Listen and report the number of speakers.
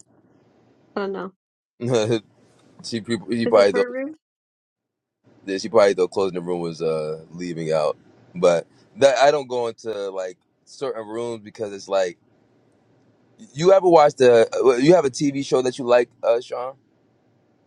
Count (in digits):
2